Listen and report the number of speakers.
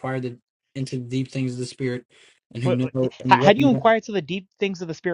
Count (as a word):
two